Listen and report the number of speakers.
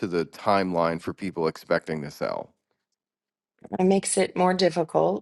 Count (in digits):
2